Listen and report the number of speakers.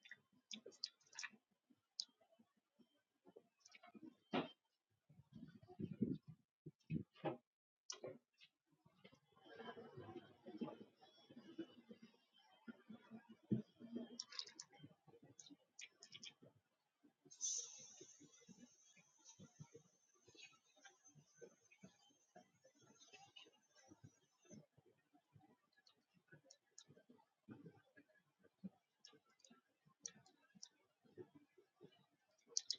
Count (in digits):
0